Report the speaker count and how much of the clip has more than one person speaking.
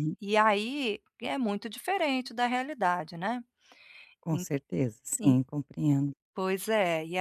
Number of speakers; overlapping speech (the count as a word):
two, about 4%